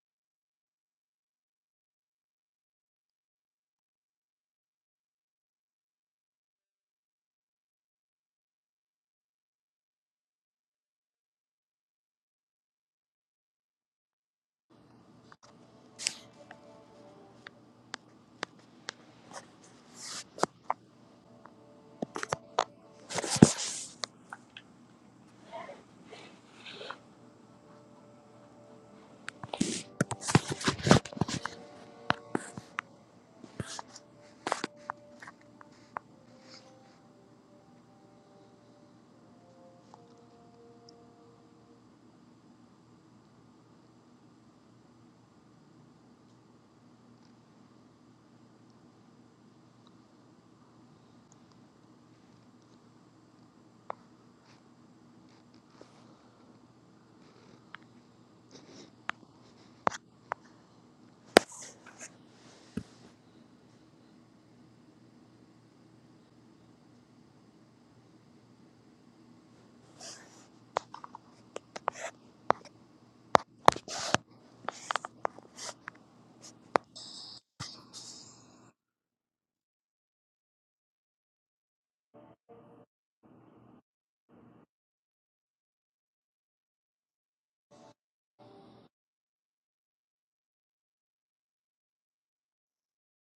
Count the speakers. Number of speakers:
zero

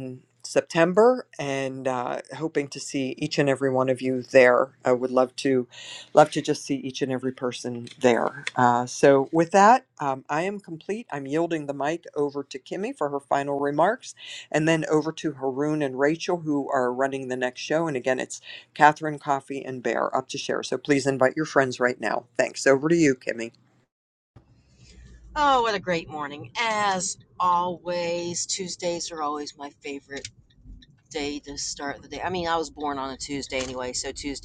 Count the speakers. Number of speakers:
two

